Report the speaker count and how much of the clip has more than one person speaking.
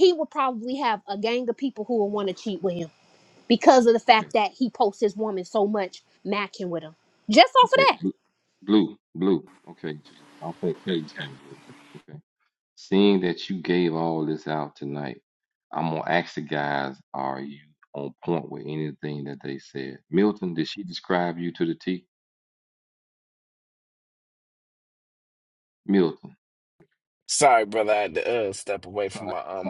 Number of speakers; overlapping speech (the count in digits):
3, about 3%